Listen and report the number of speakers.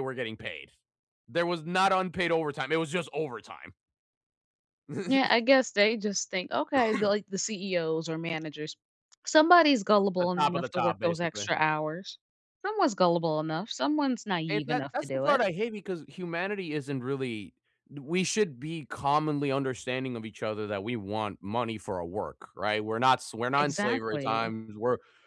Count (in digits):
2